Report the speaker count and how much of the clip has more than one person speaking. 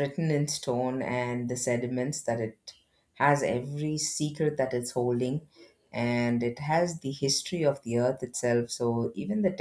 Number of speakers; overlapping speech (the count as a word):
one, no overlap